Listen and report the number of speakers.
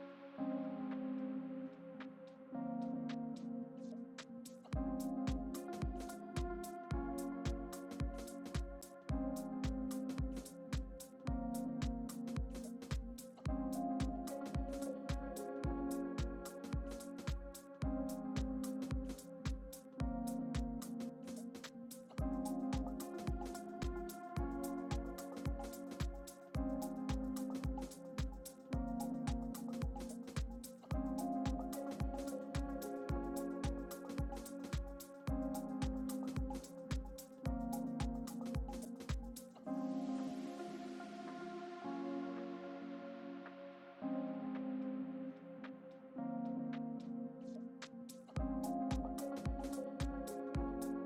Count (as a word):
zero